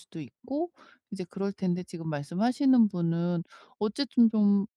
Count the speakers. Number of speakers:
1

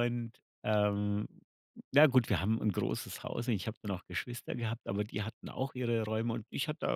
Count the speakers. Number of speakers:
1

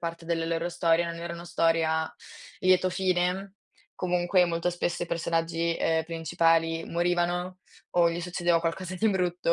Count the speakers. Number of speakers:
1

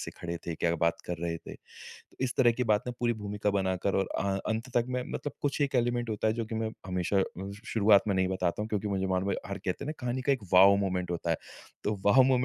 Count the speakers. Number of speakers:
1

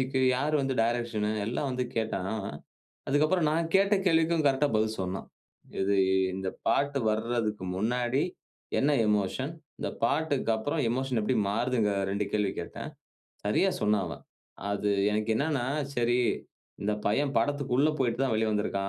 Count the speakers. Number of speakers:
1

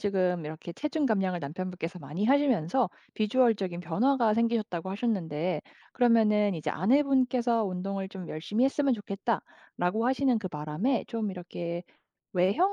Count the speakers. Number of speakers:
1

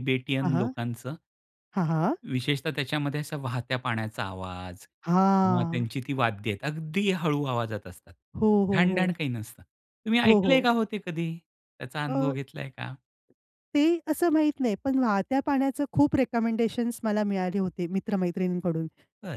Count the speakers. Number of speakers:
2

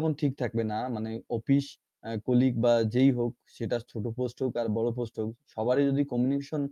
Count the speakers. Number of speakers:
1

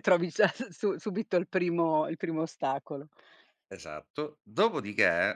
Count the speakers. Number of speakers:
2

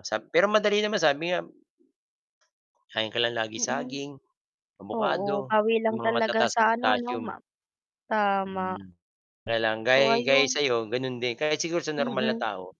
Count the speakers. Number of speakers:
2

